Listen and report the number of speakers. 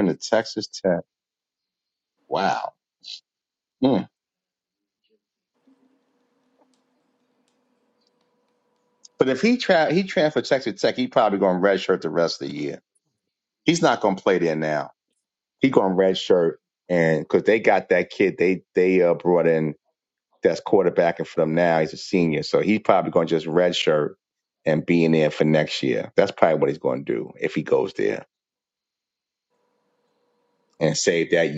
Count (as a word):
one